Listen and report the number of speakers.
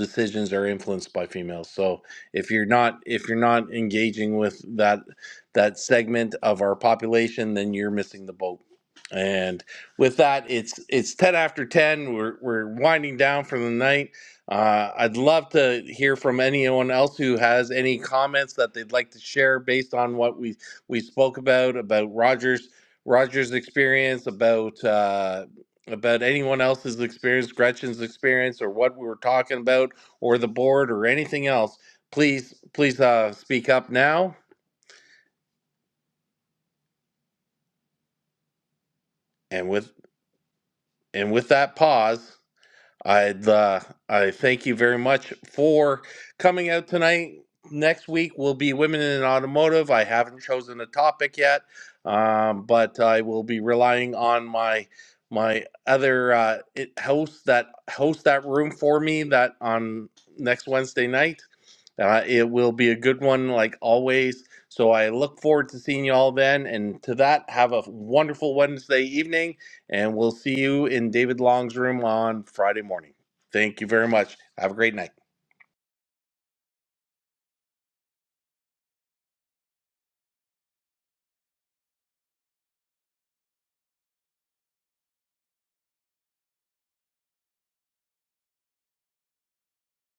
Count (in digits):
1